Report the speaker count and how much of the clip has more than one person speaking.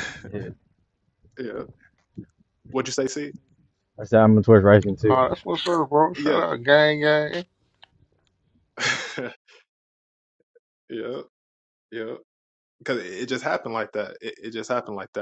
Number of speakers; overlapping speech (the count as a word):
three, about 3%